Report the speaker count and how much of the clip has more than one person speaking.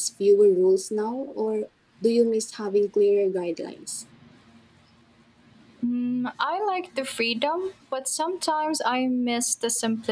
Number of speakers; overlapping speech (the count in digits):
2, no overlap